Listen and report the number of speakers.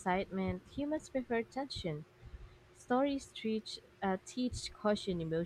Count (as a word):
one